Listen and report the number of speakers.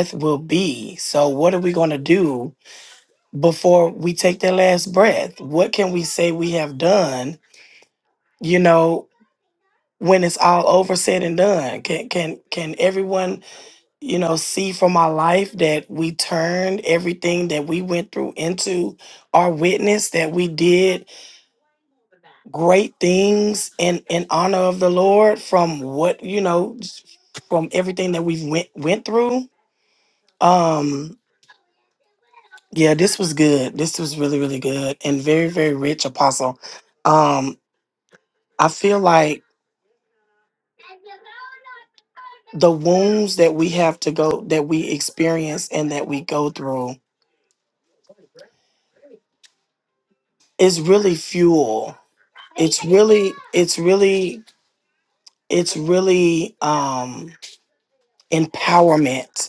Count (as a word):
one